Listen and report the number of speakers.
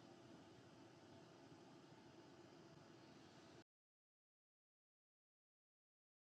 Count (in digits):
0